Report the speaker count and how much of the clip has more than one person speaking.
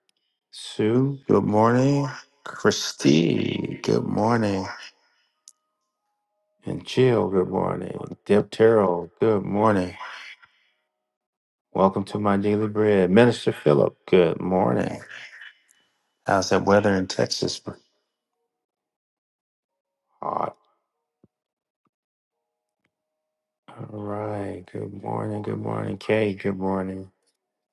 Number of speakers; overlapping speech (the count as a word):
one, no overlap